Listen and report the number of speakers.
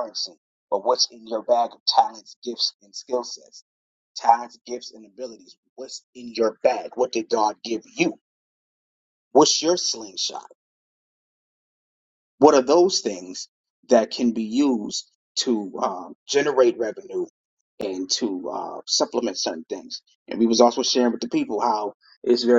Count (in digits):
1